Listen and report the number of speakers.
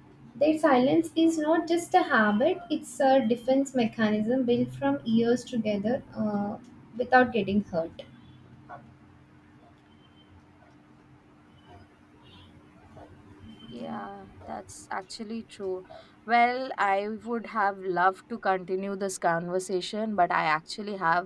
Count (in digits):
2